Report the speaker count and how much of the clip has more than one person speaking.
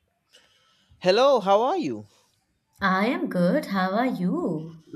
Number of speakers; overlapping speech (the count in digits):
2, no overlap